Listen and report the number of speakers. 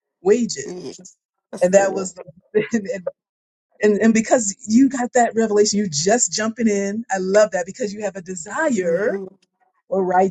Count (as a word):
two